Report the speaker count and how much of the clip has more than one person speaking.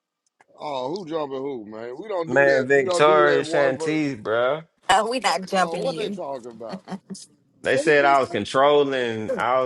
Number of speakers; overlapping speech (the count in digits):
3, about 25%